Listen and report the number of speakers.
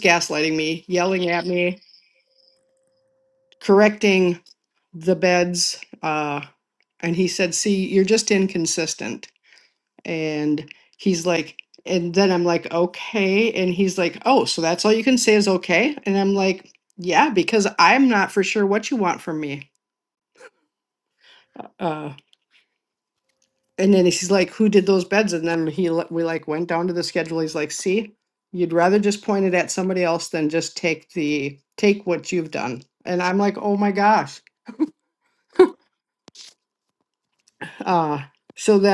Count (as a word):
one